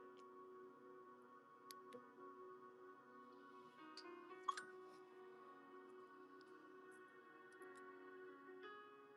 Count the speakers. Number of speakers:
0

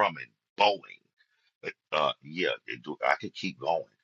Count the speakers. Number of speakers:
1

